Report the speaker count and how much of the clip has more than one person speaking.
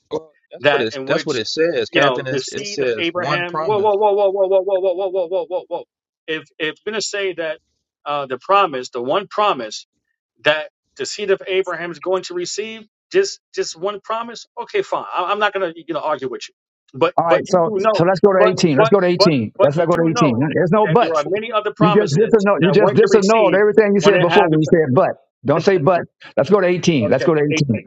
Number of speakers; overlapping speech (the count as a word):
three, about 33%